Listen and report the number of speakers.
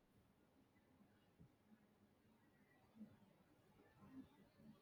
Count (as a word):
zero